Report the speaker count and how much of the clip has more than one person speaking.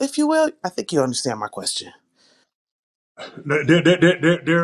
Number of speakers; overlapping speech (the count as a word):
two, no overlap